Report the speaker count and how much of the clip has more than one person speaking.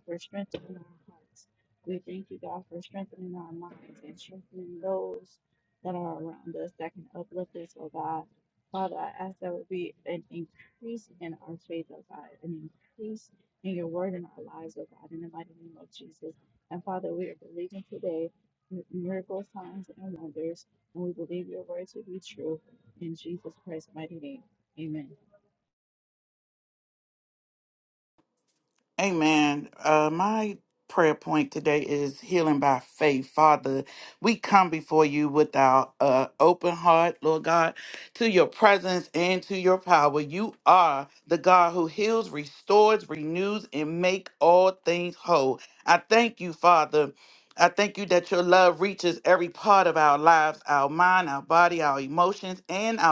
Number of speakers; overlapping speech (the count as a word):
two, no overlap